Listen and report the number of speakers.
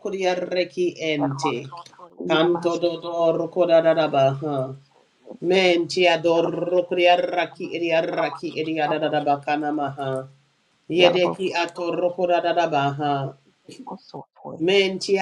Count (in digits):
2